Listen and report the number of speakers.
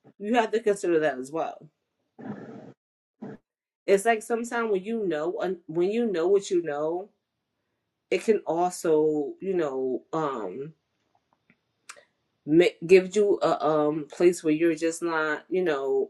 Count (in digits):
1